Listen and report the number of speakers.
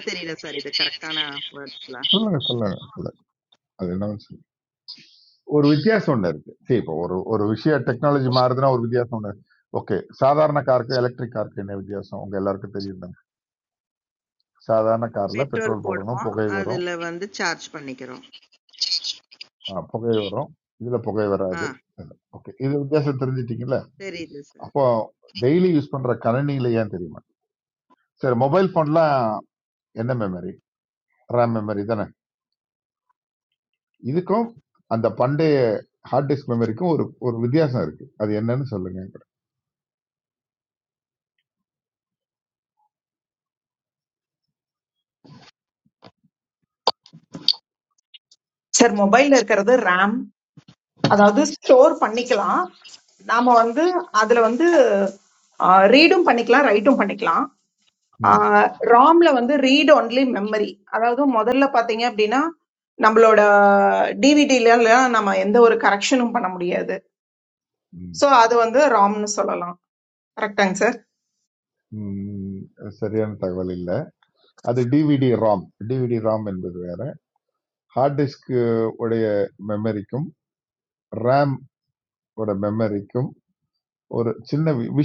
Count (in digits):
3